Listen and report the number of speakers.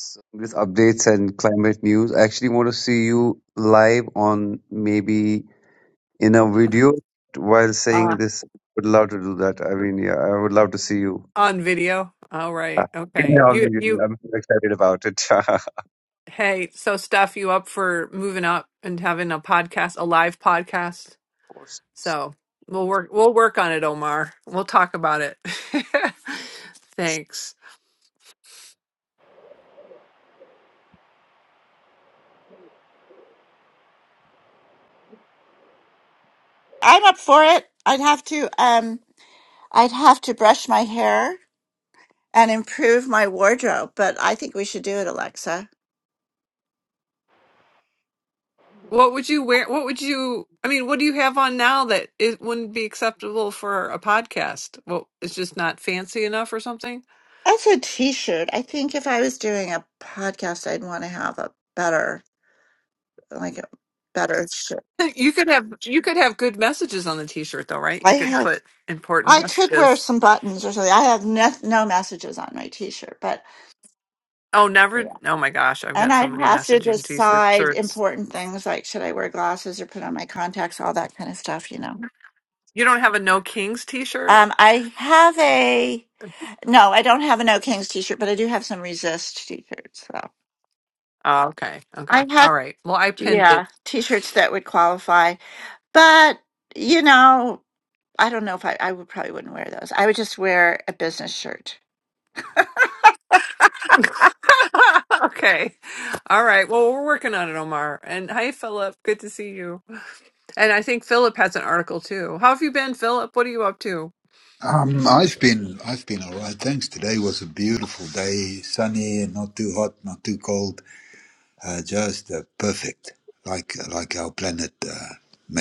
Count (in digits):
4